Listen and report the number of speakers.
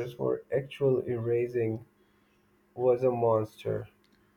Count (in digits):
1